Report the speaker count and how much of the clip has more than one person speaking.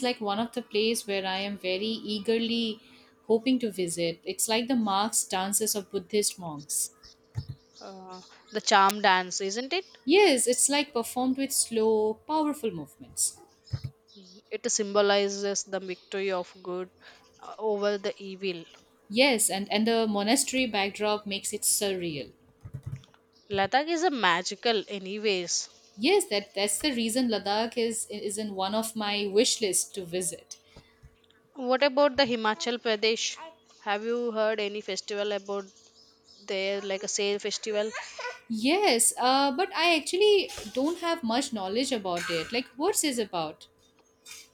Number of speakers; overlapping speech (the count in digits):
2, no overlap